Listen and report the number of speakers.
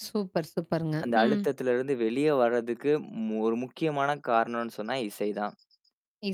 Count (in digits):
2